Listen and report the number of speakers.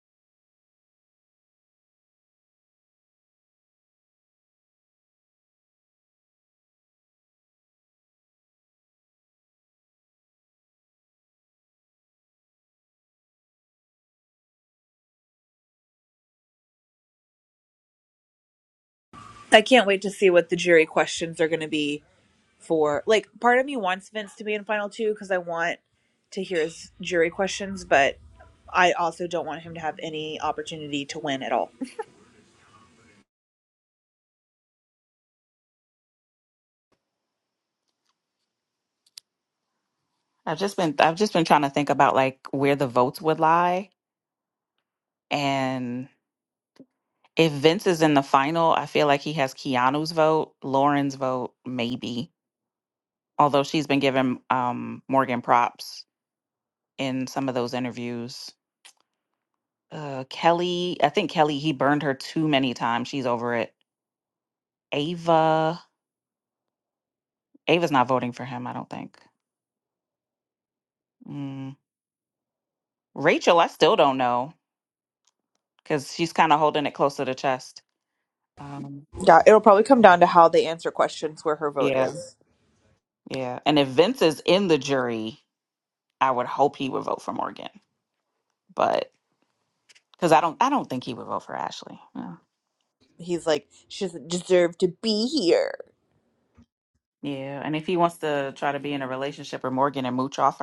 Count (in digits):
2